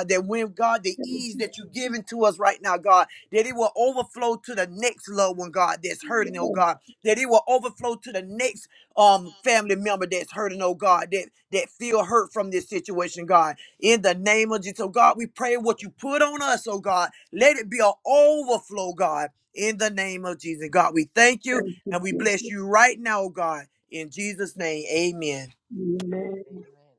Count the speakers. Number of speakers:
2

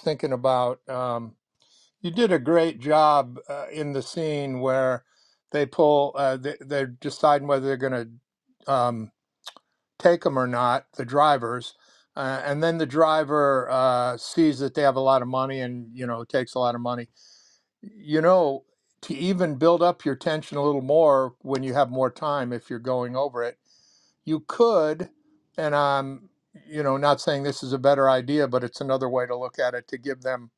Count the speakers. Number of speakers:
1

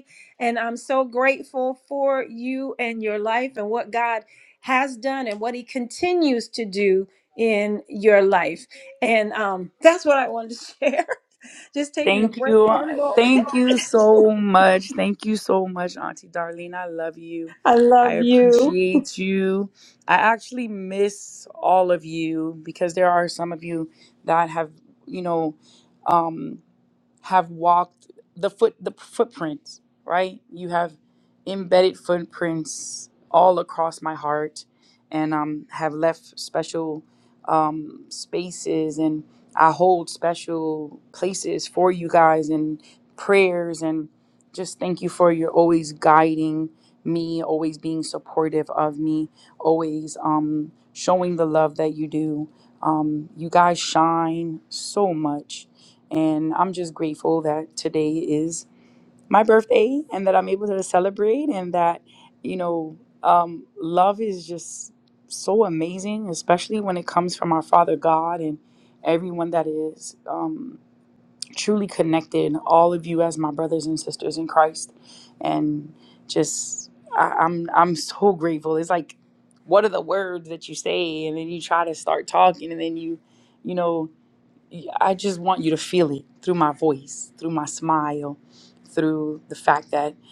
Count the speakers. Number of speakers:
2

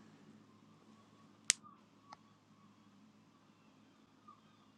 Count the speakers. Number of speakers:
0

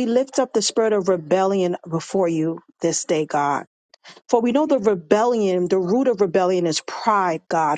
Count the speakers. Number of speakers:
1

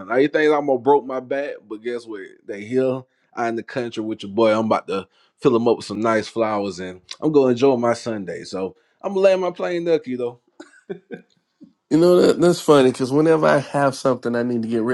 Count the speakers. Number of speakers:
2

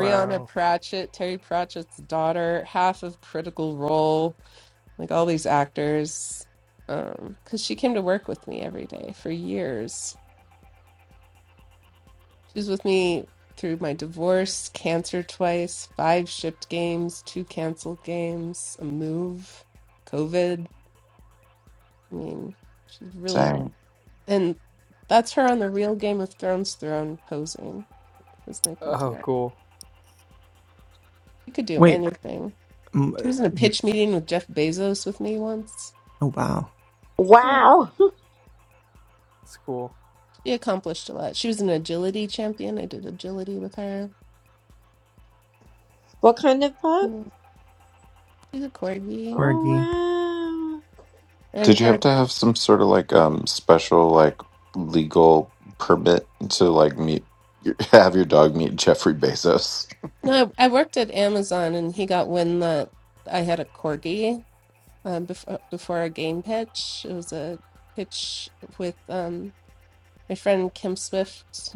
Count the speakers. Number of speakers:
5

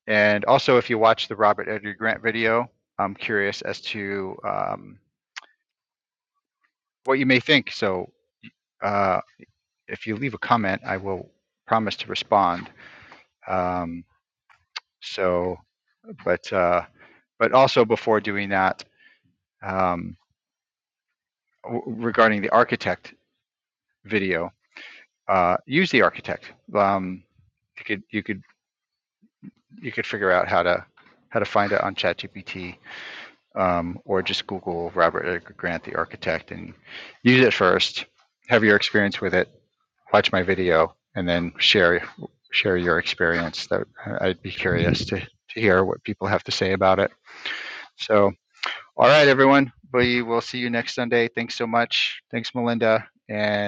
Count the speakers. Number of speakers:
1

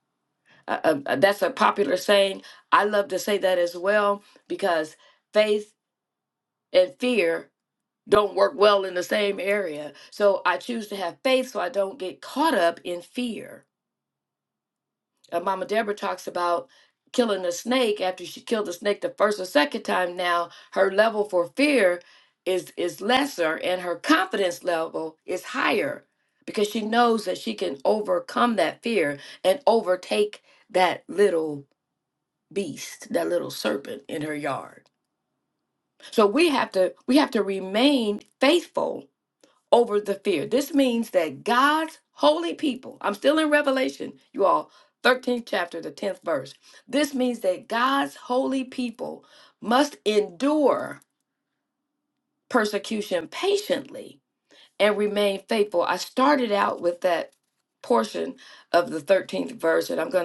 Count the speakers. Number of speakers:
1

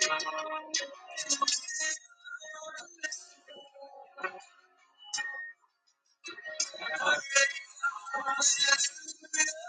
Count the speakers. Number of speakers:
0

